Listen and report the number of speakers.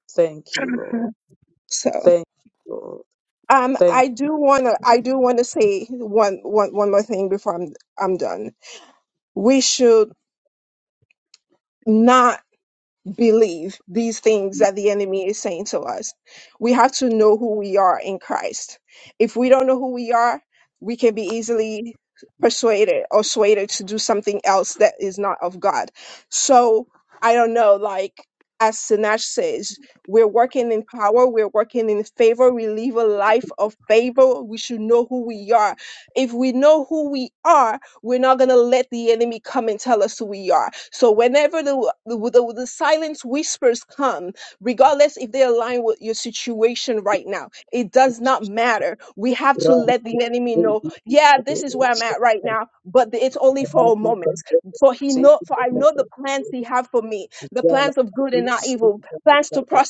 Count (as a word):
two